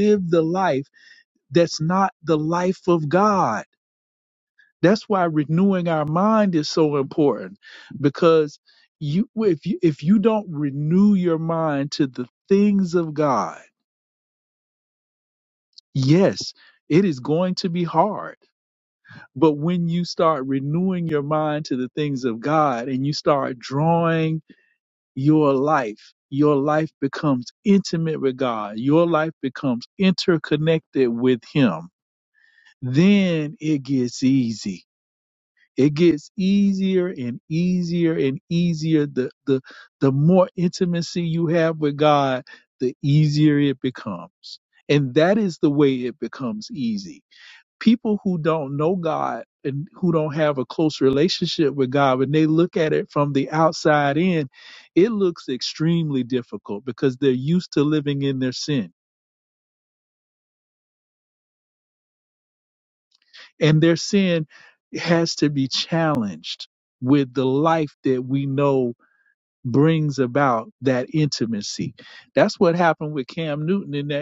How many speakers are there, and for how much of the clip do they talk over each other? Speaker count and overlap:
one, no overlap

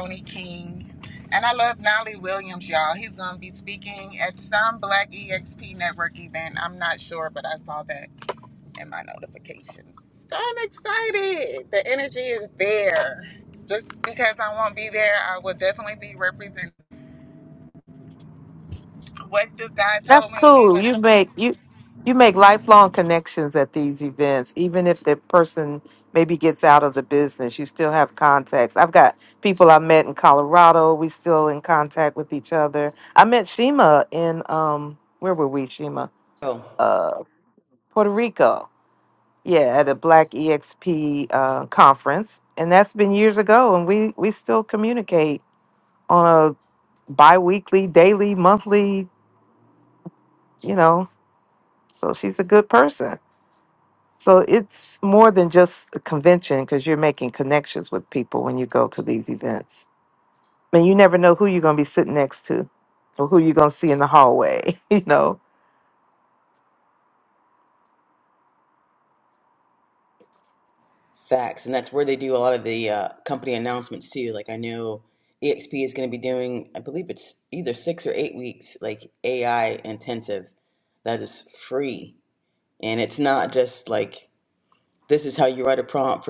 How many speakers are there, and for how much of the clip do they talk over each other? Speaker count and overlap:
three, about 1%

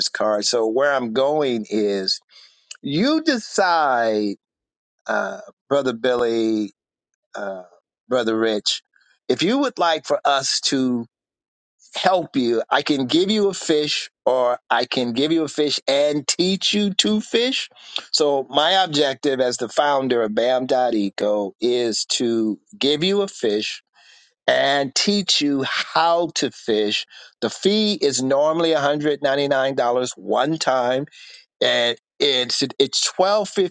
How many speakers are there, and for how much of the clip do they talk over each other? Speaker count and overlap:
one, no overlap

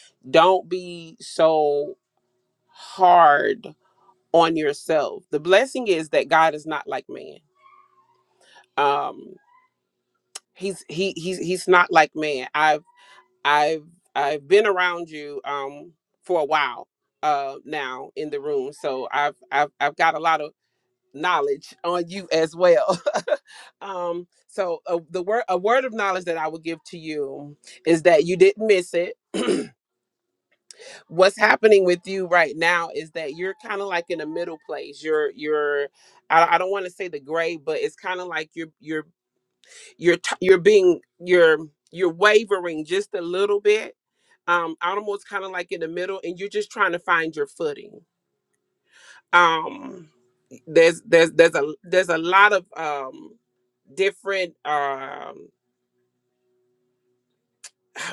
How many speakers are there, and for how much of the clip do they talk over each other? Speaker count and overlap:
one, no overlap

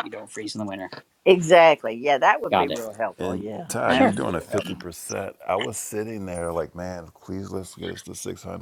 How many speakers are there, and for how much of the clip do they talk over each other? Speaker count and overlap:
three, about 22%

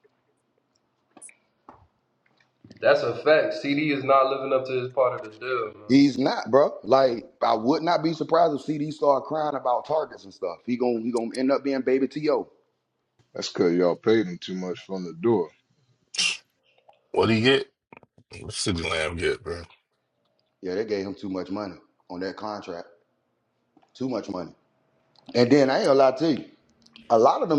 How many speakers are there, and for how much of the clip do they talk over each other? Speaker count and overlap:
four, under 1%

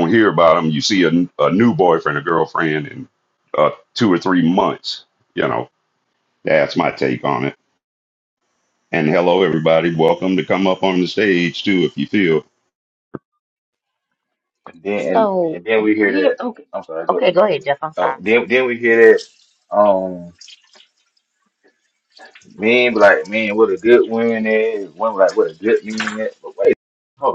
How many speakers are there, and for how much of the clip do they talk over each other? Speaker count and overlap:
three, about 4%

